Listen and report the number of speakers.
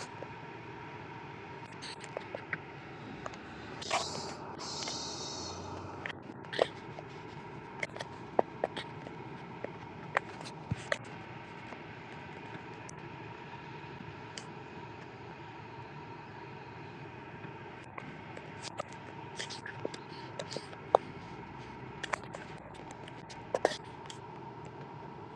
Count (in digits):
0